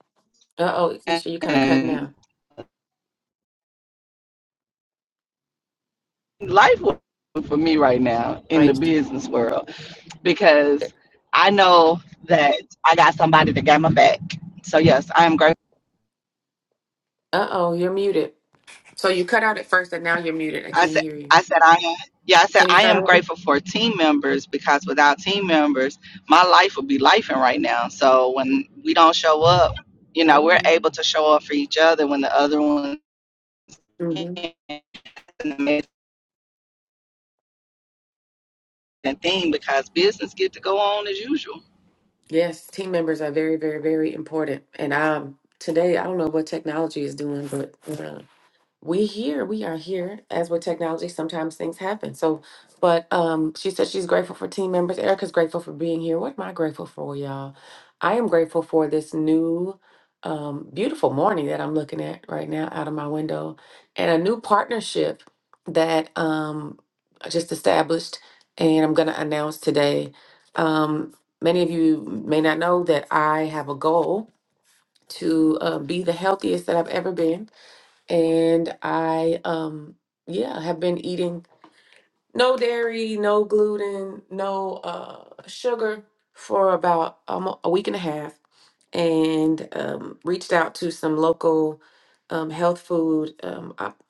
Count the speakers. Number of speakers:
2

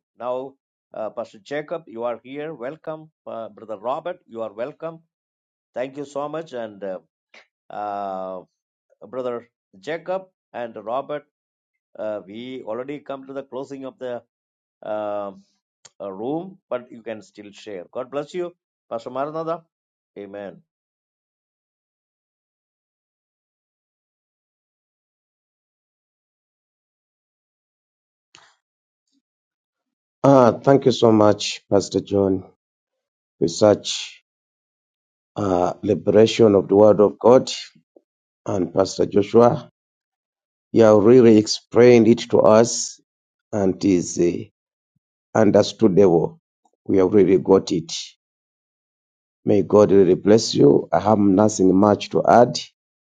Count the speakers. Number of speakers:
2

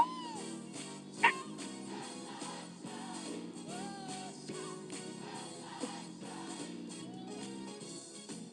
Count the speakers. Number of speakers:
0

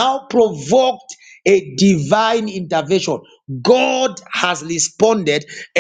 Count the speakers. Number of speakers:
1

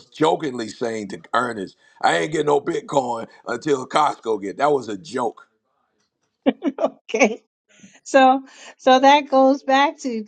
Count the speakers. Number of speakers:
2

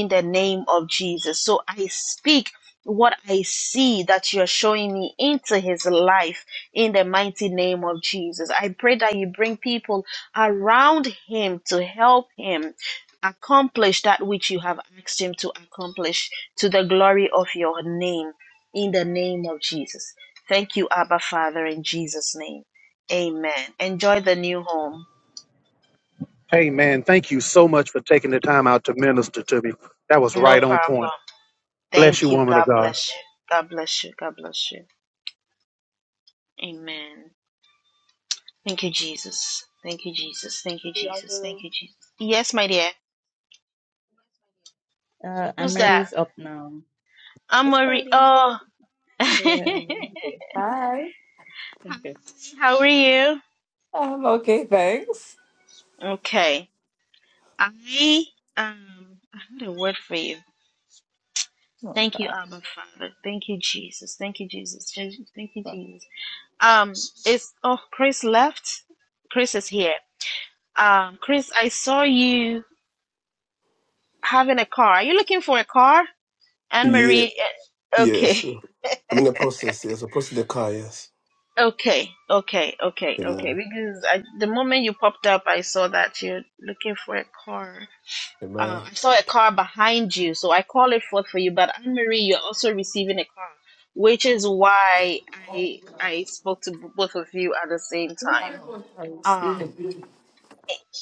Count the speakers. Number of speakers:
5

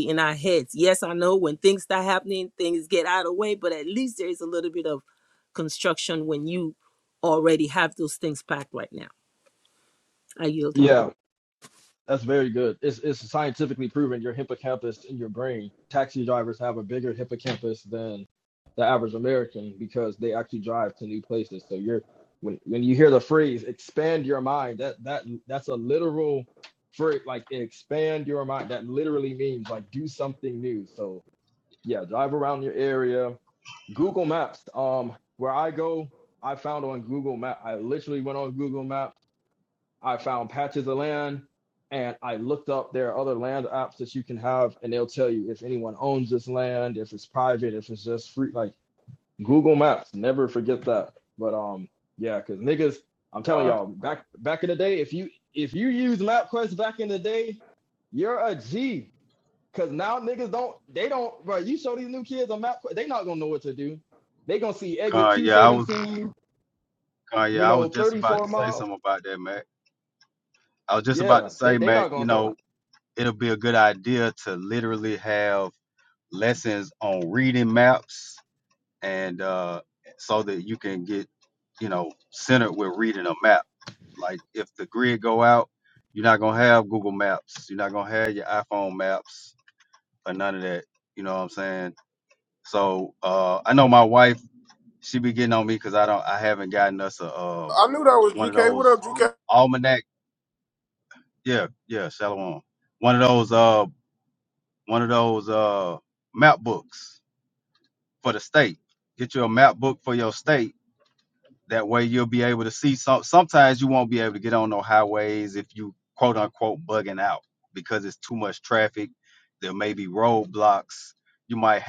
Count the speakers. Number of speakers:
4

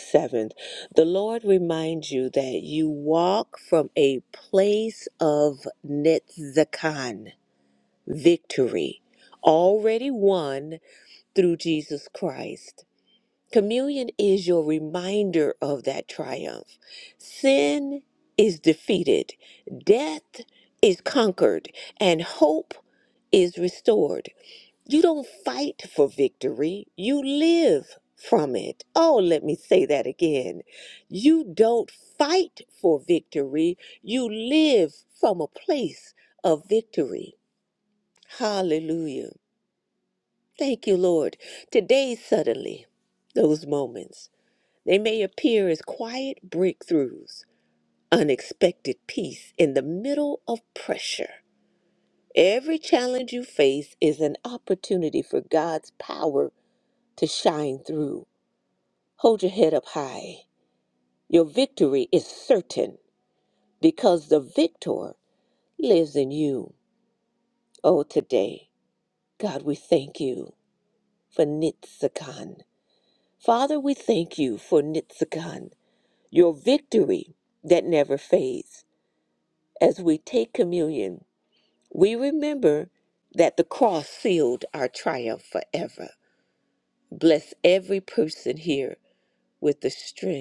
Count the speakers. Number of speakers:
1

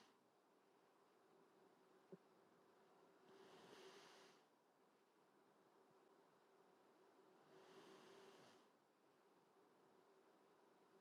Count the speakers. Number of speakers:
0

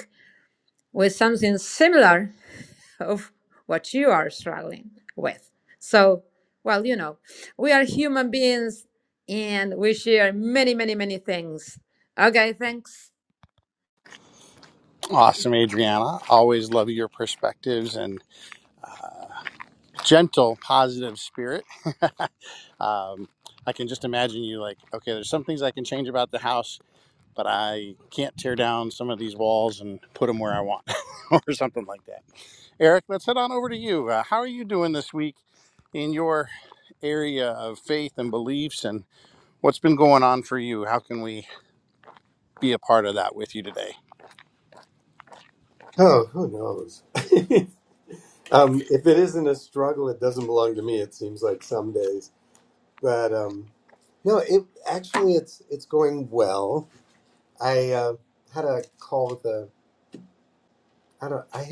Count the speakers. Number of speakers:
3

